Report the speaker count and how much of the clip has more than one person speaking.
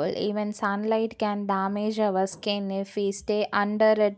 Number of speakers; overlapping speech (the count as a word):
one, no overlap